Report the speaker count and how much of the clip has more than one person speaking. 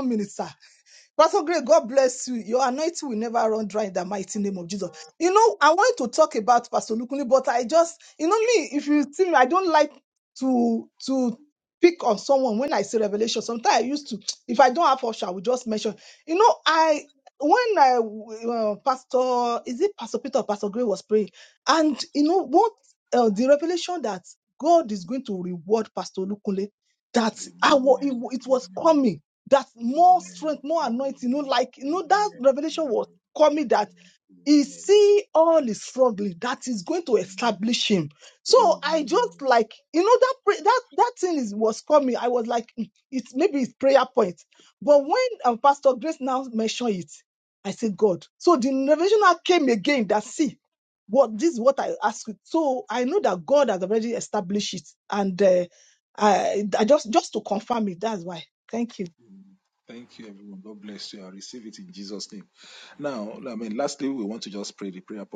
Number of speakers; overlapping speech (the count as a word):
two, under 1%